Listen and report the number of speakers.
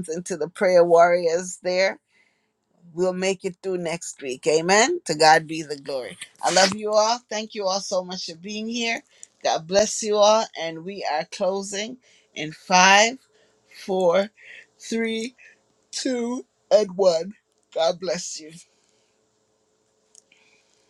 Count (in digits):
1